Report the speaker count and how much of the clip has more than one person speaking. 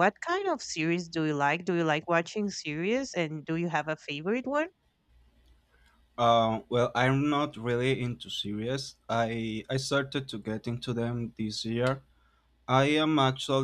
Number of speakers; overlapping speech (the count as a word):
two, no overlap